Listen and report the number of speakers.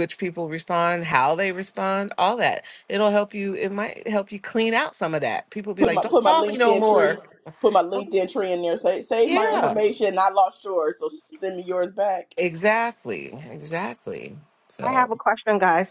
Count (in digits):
3